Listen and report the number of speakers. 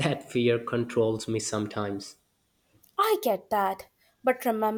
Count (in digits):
2